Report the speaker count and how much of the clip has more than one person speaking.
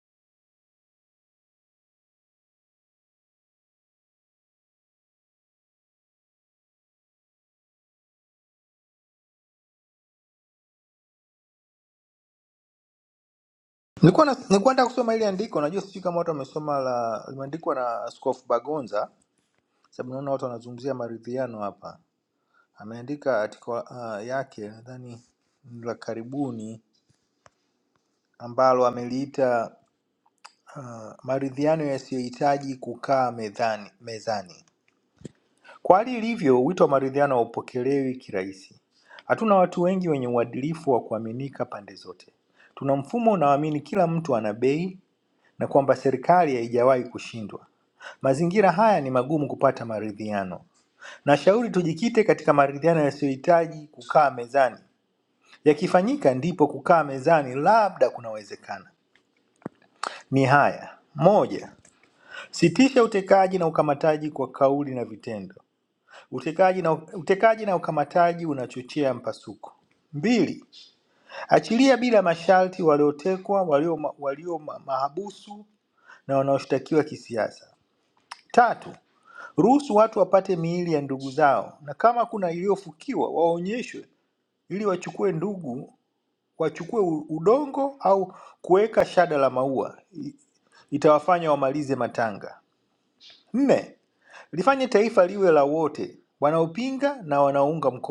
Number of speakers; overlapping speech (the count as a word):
one, no overlap